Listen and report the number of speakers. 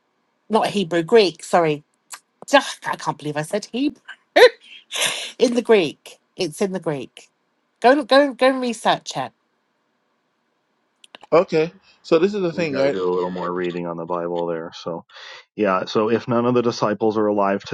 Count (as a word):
three